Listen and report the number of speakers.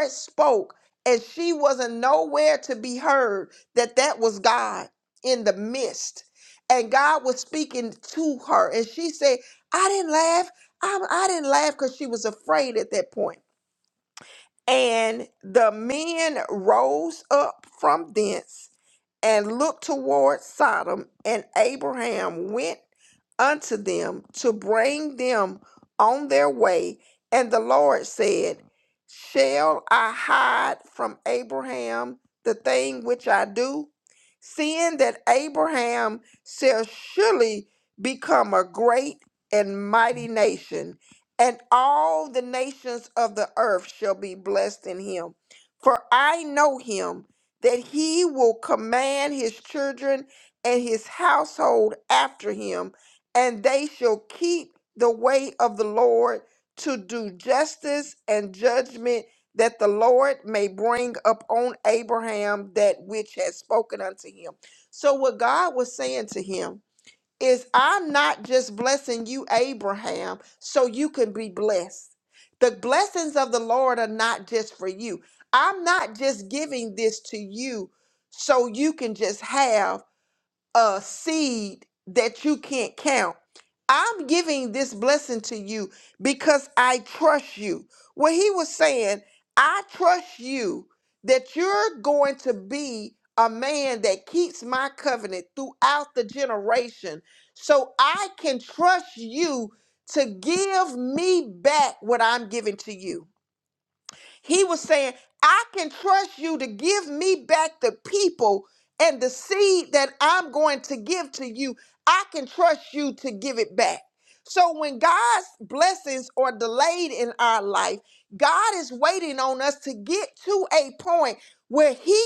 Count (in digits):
1